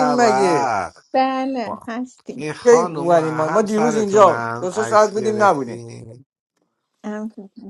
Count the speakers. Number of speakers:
three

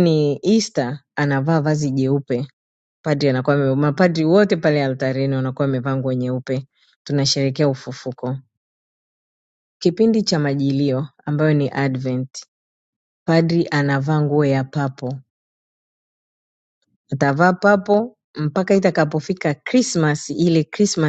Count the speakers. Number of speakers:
one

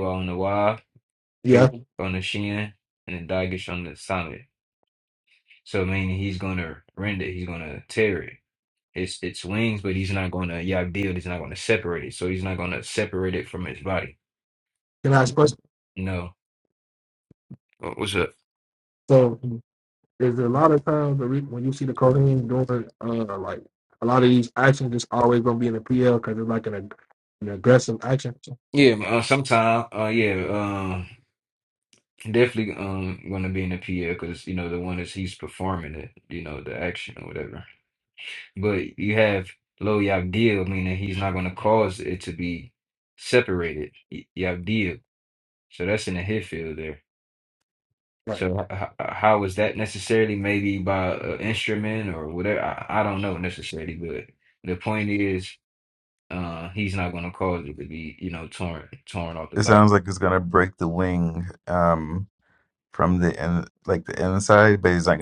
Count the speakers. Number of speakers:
three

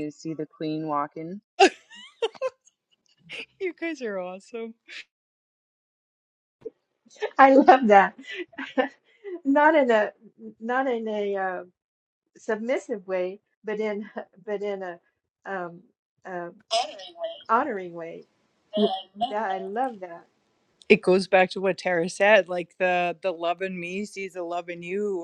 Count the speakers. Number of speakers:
three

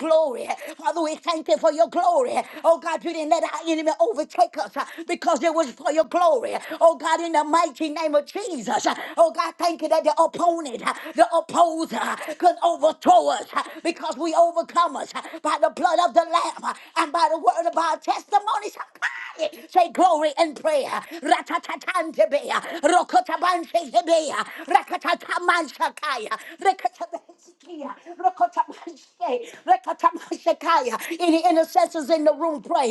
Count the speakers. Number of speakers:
one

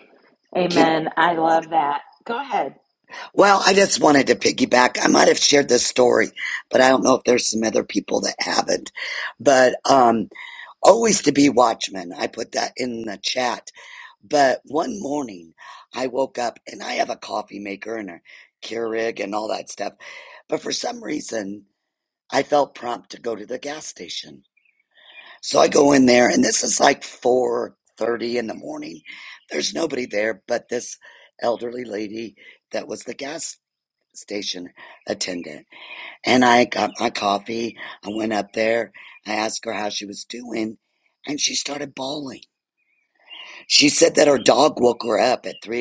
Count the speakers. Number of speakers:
two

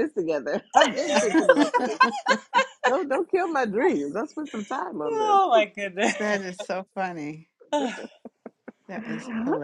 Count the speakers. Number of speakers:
three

